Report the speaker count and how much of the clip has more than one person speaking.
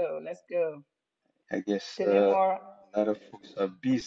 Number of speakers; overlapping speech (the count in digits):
2, about 10%